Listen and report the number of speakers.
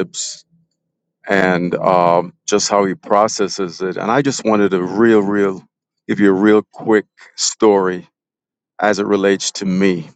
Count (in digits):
1